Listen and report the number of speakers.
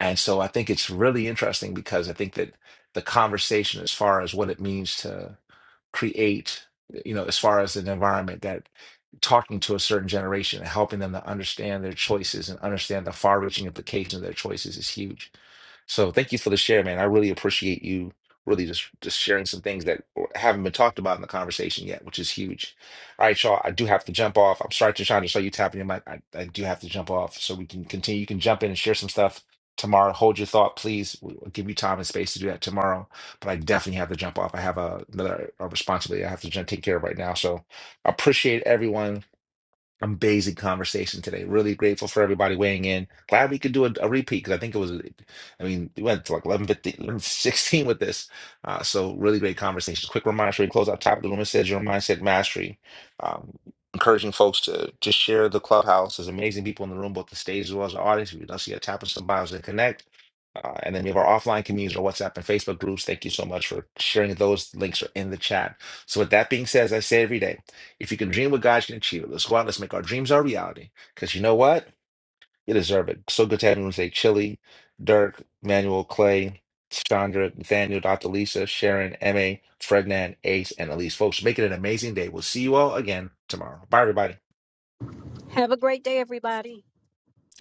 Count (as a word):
two